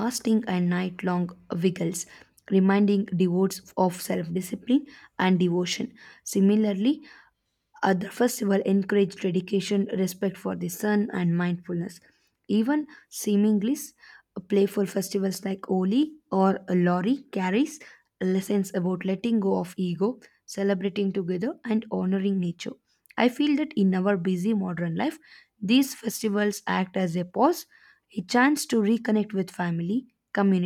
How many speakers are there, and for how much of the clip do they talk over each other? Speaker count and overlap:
one, no overlap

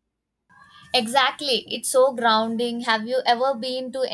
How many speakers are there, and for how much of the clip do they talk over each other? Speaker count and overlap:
one, no overlap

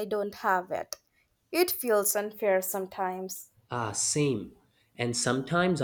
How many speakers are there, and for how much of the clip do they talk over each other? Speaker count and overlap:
two, no overlap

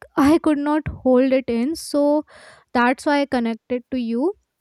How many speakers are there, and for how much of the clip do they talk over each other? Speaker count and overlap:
one, no overlap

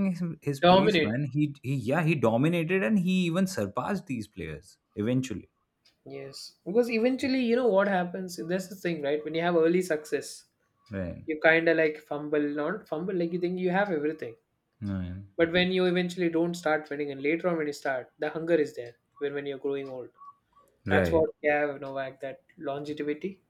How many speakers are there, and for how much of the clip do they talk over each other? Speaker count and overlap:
two, about 4%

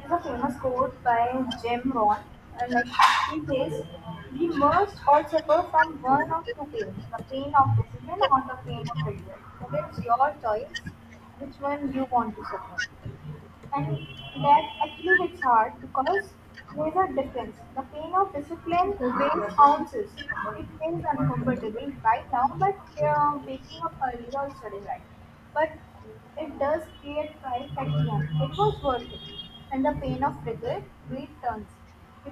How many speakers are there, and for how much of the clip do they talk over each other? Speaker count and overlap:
one, no overlap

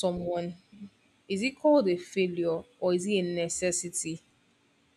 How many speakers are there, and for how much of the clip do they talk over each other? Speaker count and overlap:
one, no overlap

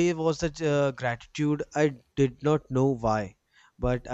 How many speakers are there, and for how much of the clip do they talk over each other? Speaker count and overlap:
one, no overlap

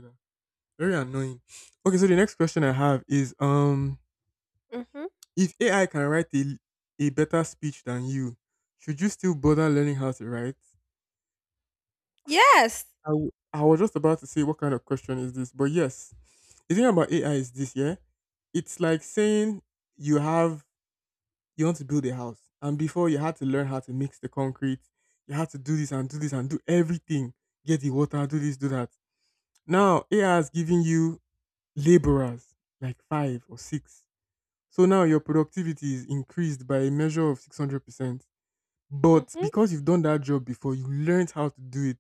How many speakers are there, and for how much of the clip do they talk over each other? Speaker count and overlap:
two, about 1%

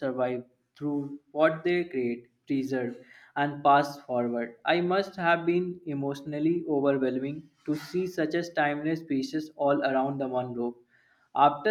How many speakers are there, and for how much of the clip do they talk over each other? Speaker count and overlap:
one, no overlap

